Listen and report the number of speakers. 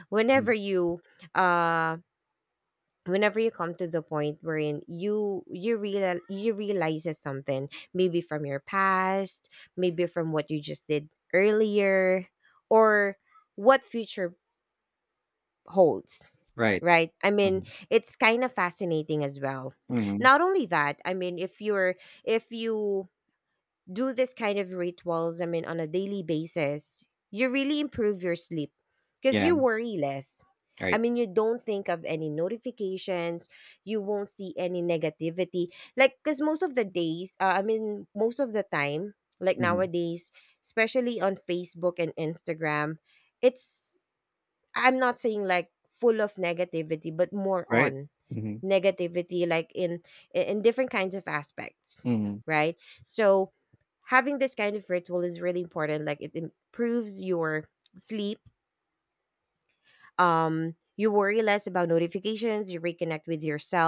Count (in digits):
2